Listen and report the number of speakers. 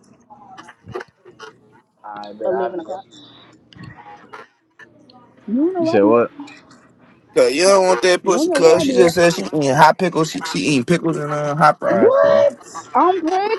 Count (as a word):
three